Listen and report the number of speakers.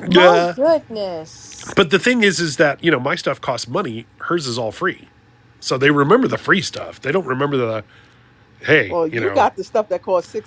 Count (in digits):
3